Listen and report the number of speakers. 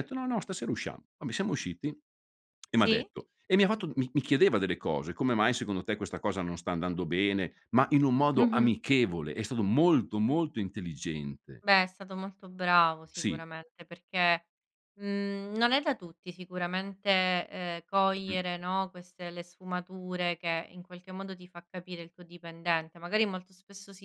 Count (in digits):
2